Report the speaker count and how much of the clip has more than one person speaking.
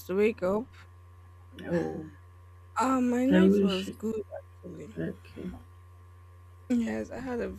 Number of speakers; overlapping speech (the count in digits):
2, about 9%